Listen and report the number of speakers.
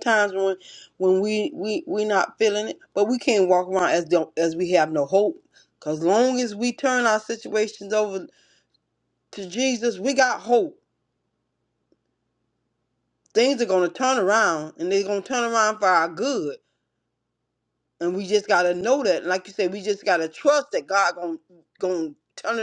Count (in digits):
1